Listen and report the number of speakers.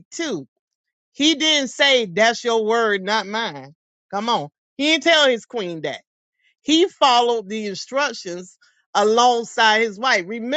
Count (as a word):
one